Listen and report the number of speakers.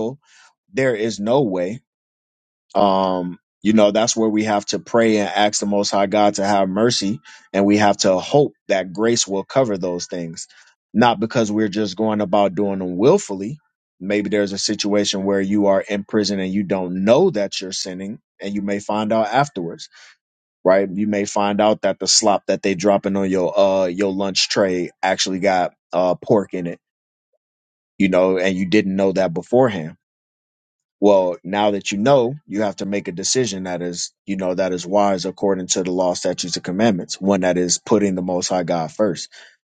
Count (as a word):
one